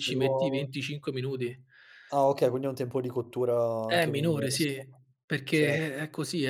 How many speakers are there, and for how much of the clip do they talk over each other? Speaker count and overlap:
2, about 29%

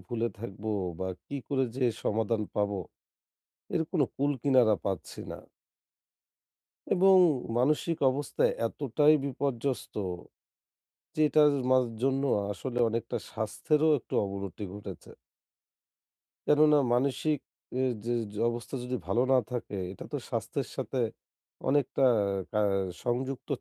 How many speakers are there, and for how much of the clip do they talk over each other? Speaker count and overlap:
1, no overlap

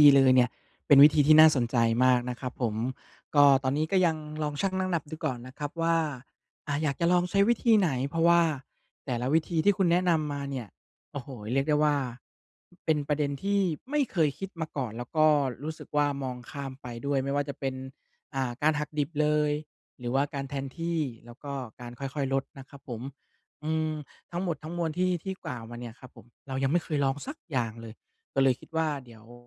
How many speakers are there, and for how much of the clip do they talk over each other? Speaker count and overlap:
1, no overlap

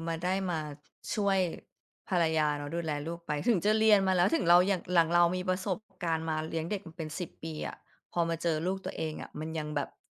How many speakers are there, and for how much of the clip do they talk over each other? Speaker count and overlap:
1, no overlap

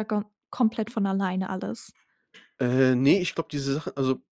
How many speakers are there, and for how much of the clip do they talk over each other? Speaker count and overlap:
2, no overlap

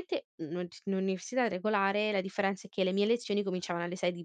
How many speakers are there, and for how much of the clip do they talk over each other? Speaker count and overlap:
1, no overlap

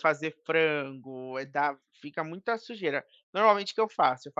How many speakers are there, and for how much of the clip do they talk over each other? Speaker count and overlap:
1, no overlap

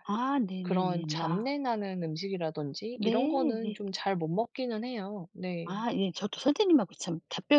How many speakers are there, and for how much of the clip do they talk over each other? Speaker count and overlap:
2, about 16%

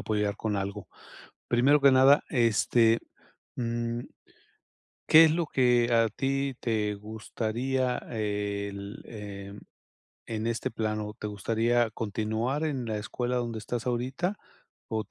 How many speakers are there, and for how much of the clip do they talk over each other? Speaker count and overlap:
1, no overlap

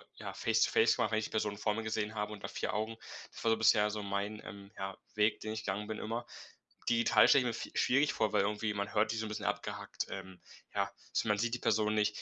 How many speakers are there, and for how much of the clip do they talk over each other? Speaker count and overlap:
1, no overlap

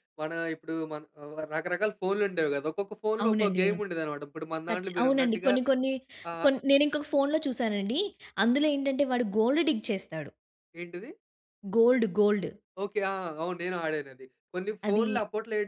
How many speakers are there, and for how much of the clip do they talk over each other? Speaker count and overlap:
2, about 12%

